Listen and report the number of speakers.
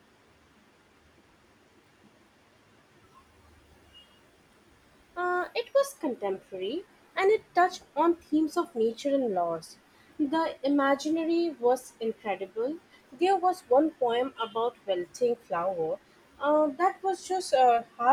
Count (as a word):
one